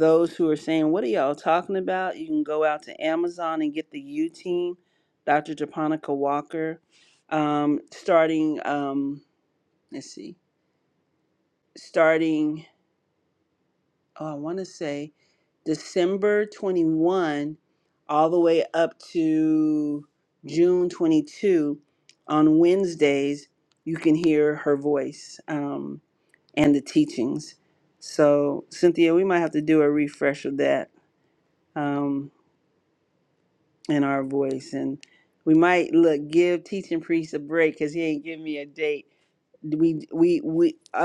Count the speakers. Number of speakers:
one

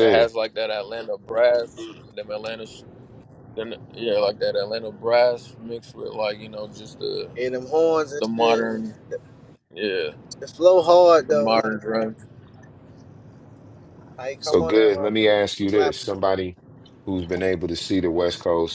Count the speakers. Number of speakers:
three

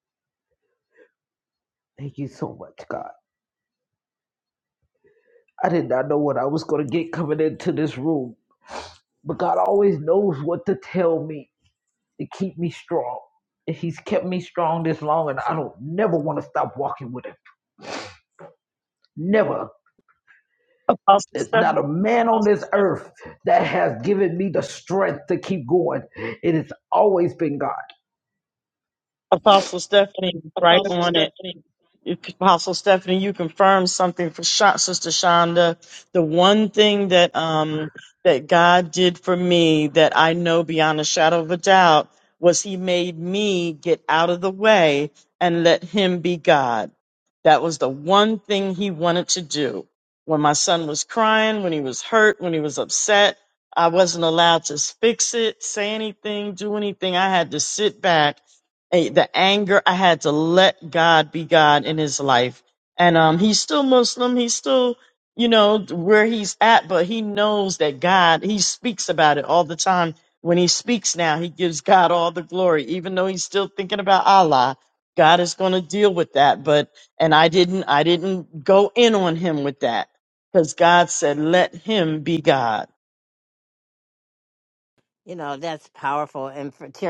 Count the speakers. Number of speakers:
three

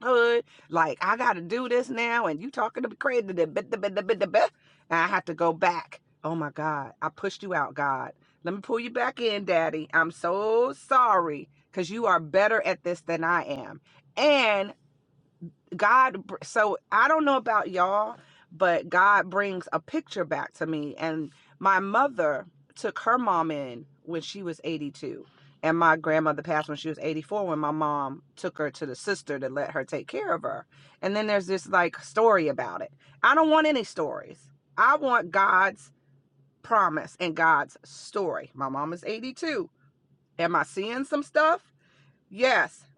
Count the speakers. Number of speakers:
one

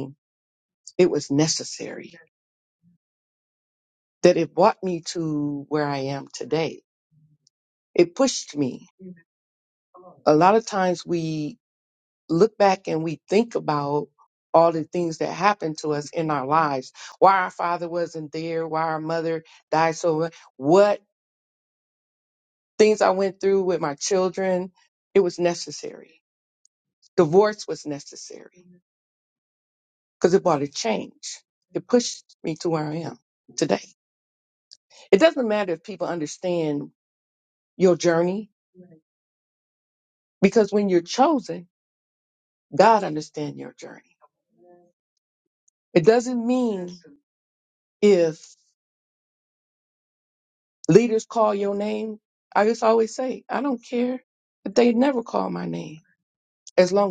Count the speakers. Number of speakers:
one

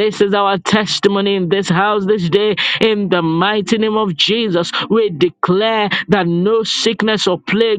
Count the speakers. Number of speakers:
one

